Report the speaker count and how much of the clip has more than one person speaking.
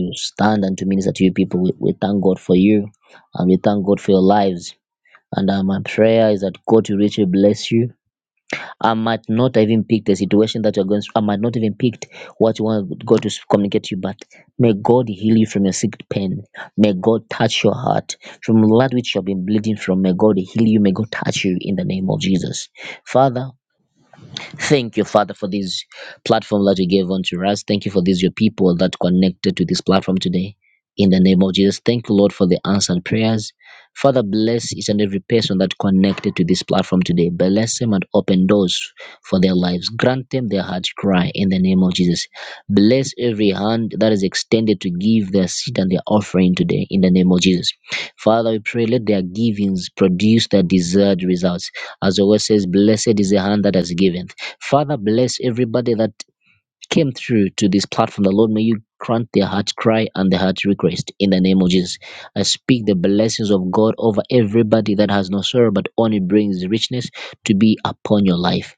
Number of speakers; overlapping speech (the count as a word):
one, no overlap